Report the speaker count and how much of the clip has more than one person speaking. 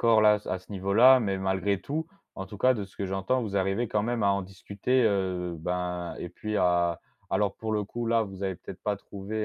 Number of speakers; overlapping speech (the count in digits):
1, no overlap